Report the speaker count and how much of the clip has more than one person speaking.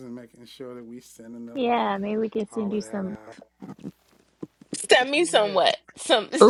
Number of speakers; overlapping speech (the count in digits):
3, about 19%